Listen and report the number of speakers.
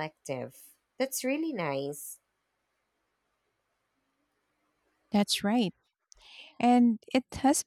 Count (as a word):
two